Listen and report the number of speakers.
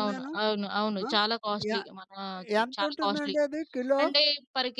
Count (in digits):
2